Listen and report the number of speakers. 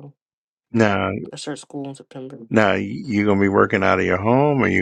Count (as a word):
two